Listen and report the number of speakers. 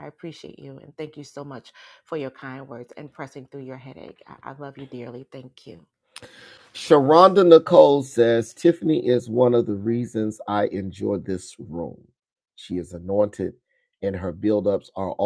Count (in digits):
2